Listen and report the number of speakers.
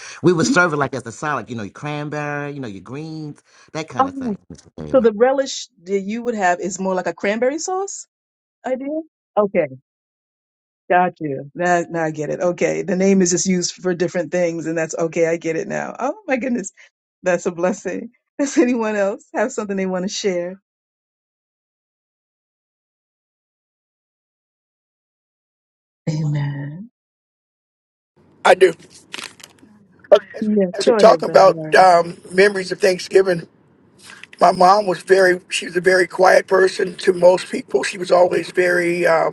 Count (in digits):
3